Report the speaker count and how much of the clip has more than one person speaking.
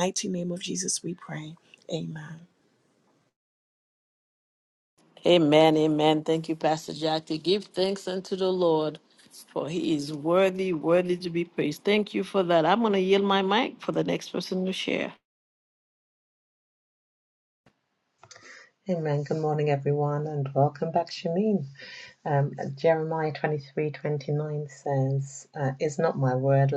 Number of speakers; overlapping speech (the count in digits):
3, no overlap